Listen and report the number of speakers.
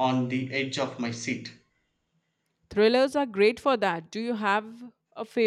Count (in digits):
2